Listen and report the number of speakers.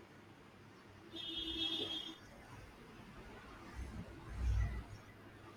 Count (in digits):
0